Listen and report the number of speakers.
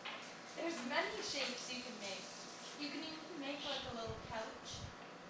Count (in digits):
1